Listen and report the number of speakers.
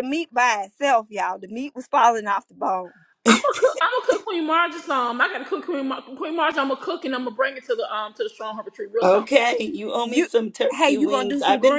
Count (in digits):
3